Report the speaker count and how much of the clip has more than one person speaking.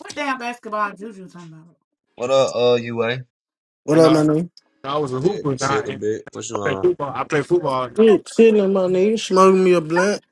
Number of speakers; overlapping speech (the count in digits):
4, about 15%